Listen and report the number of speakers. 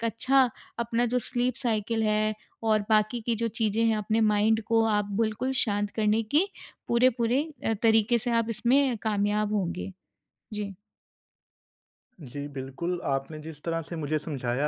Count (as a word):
two